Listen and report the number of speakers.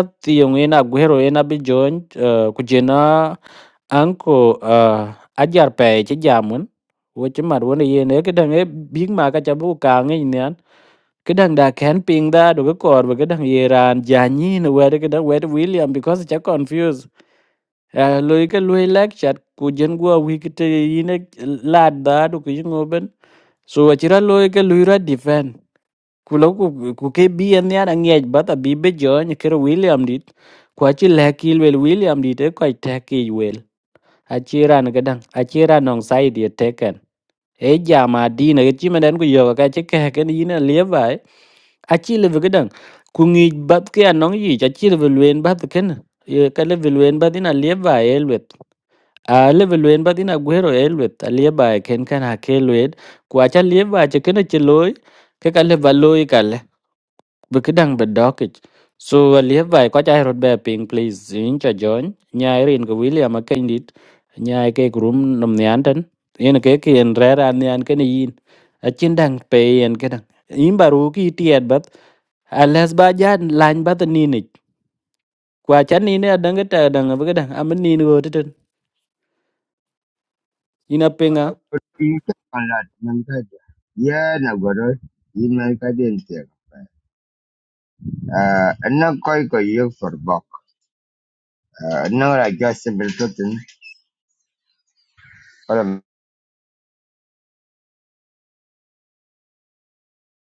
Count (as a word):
two